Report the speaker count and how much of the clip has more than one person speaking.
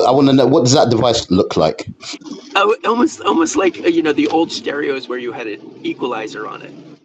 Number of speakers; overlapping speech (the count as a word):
two, no overlap